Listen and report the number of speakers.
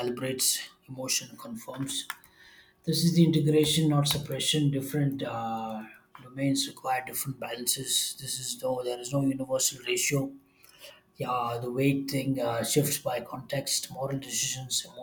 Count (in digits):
1